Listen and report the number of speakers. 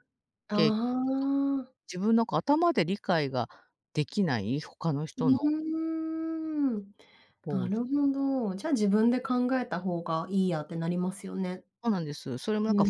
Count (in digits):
2